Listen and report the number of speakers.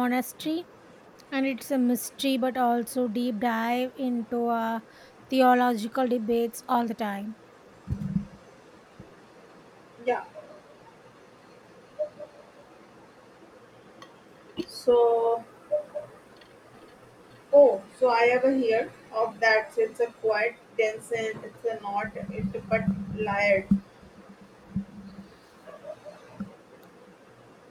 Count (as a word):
two